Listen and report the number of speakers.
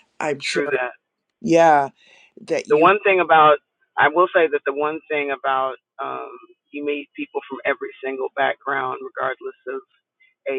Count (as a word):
two